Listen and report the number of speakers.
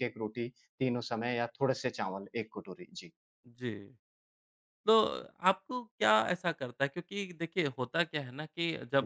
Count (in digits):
2